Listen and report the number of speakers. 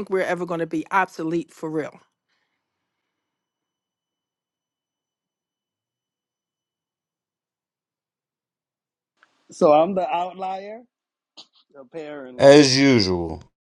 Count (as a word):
three